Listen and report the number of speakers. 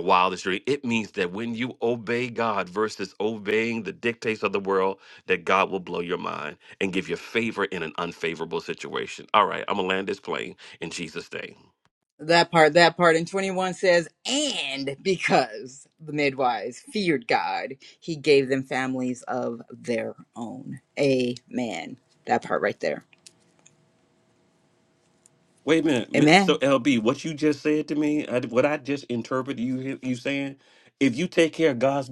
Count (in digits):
2